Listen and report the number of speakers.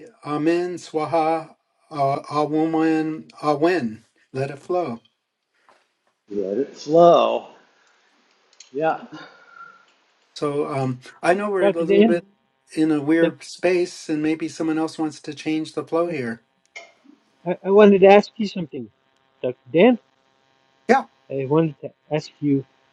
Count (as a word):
three